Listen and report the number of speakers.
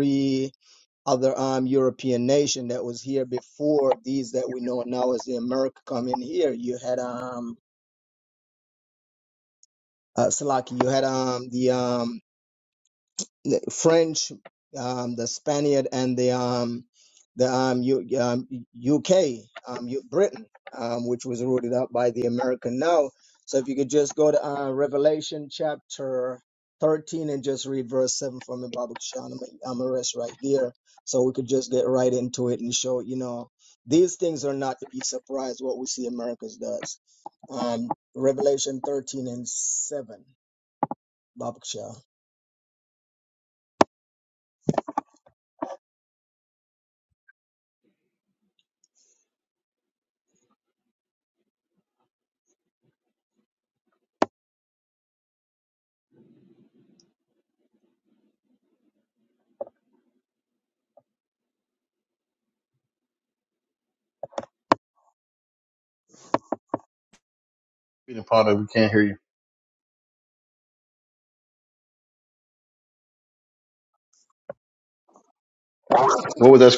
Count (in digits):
2